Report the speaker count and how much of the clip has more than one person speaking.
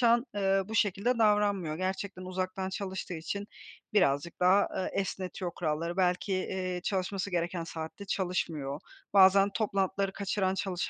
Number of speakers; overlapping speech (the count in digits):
1, no overlap